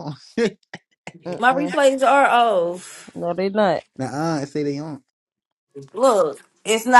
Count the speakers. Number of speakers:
three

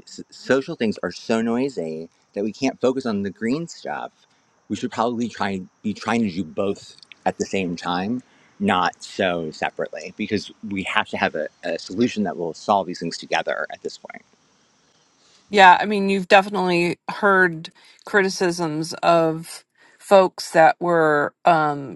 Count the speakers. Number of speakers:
two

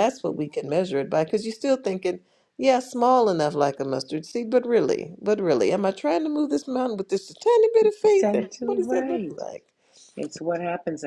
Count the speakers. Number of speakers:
two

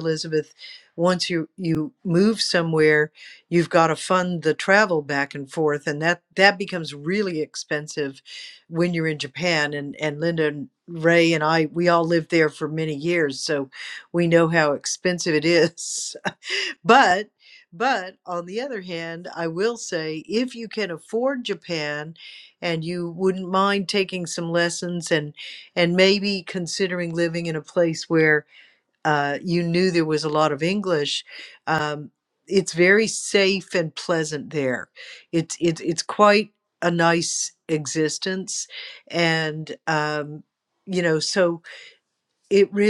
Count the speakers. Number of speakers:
one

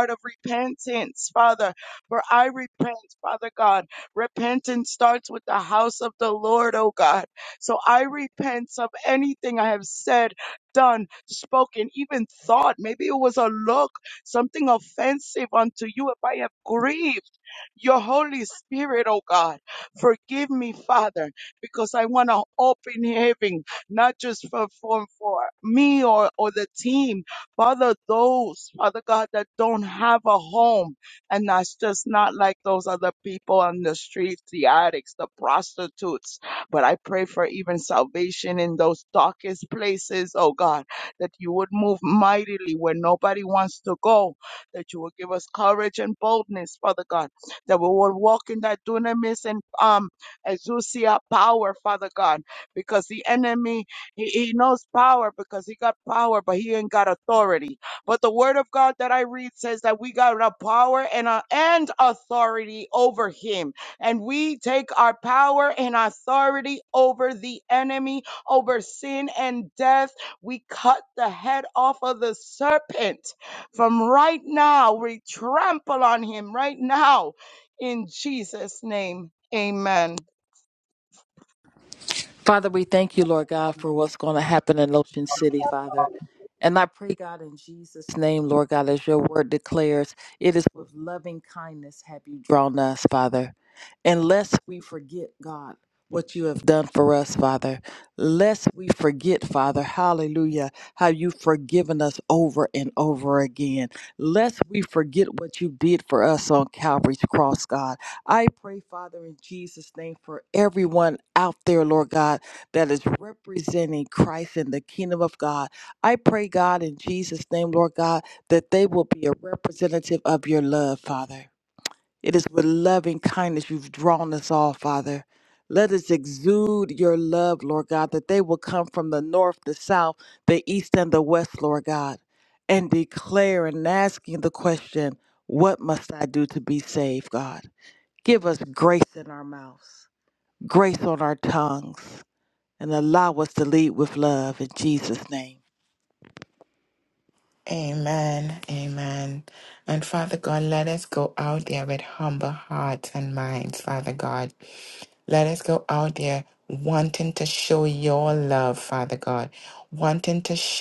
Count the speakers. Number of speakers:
three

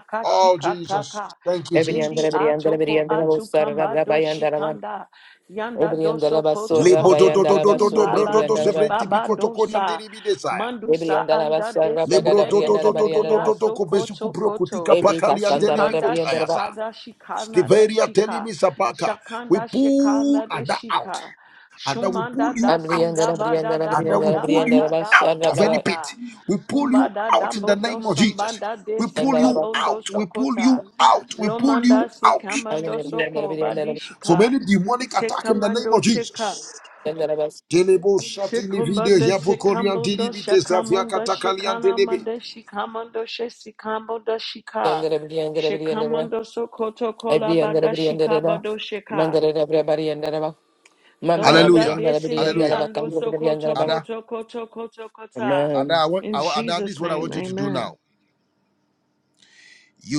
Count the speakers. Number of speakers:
three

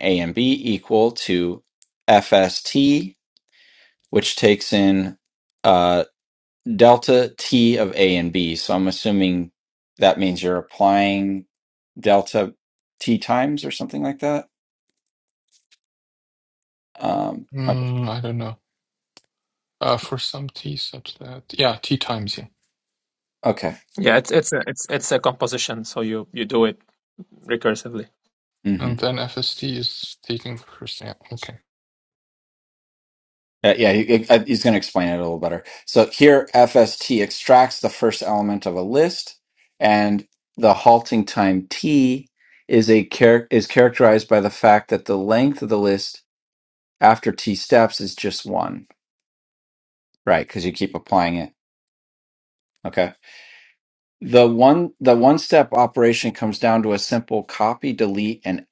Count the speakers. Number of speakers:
three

